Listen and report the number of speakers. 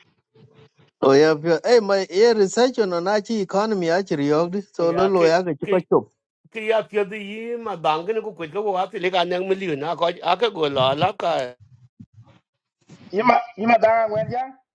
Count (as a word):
three